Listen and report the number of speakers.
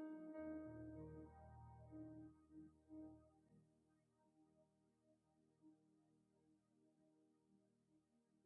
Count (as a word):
zero